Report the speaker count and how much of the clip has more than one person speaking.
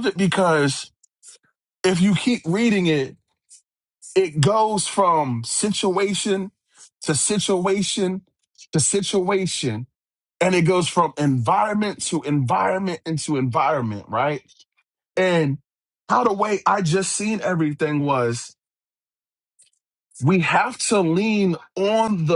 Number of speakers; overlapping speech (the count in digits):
1, no overlap